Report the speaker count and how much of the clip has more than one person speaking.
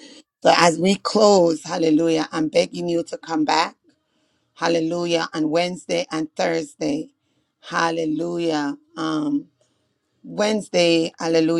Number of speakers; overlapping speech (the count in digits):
1, no overlap